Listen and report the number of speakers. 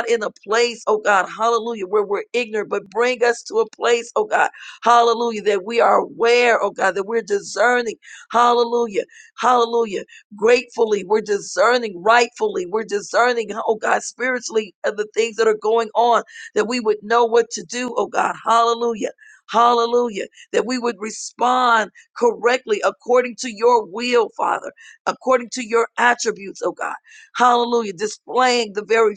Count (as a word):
one